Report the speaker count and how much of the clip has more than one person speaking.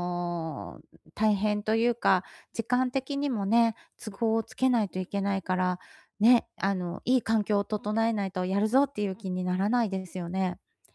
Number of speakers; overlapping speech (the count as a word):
one, no overlap